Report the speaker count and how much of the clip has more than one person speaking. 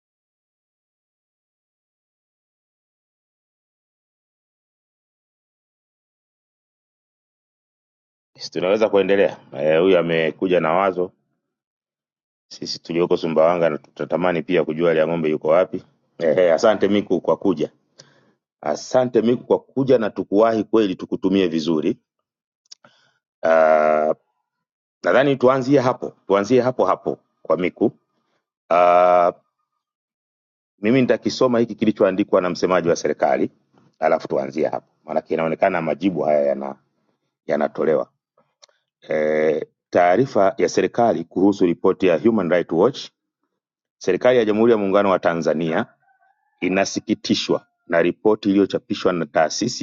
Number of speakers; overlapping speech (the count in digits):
1, no overlap